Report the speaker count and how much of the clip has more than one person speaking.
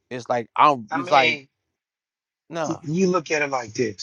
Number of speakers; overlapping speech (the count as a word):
two, about 14%